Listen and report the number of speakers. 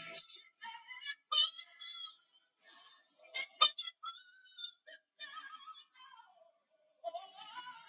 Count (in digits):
0